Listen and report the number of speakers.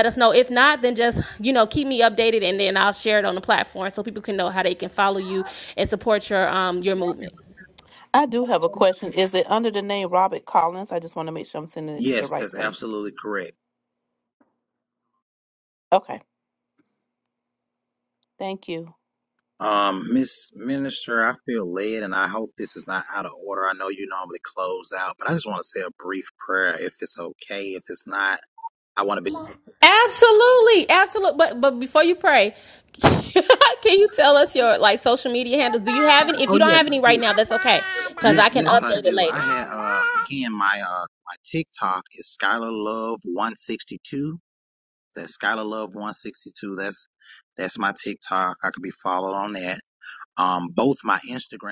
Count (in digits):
3